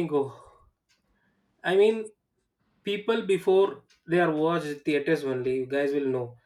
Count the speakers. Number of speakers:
1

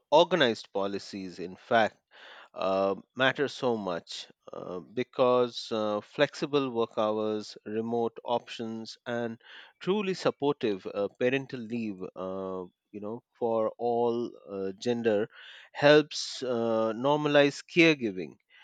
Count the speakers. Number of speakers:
1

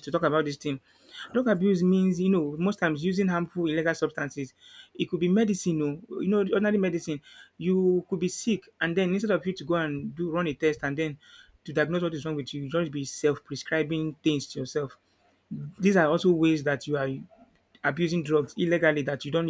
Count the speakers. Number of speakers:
1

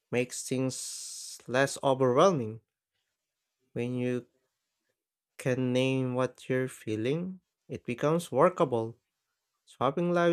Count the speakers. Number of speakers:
1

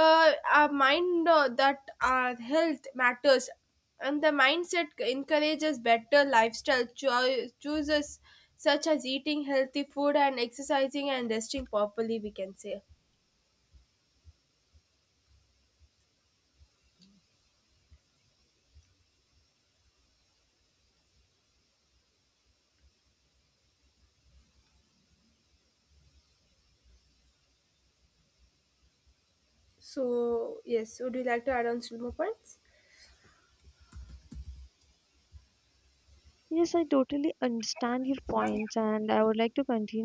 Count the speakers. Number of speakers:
2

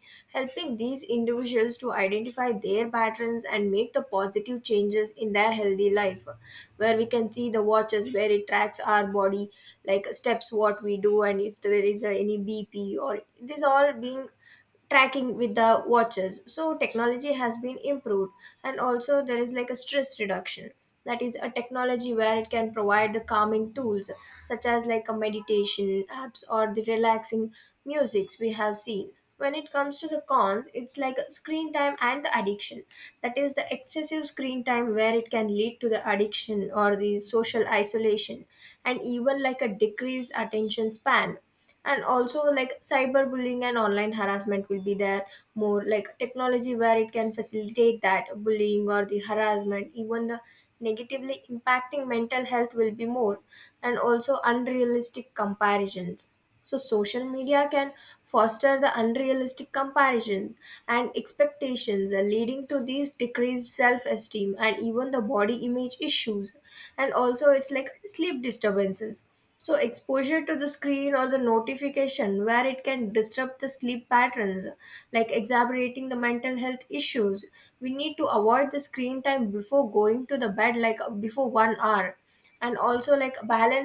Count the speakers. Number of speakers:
1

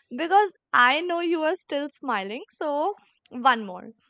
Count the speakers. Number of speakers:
1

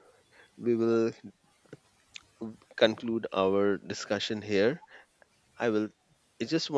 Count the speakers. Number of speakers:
1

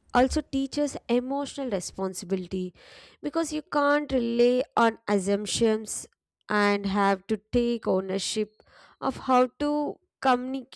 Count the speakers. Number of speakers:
1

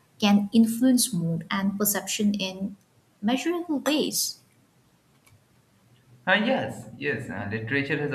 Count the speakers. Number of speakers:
2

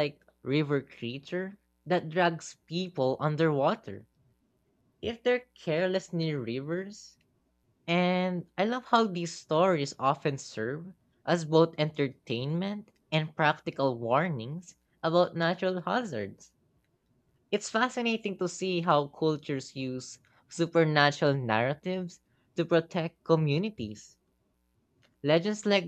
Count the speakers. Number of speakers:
1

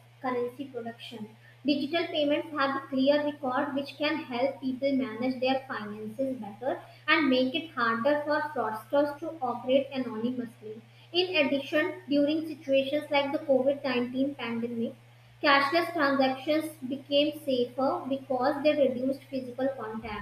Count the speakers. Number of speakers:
1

